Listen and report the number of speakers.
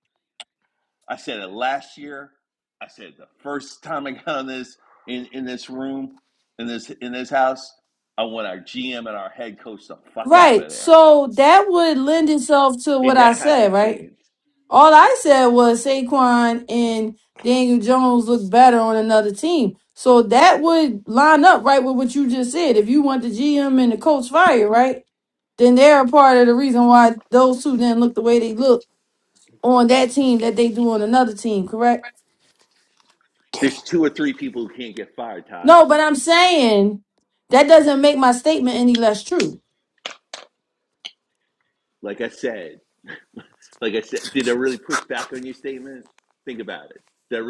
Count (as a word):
two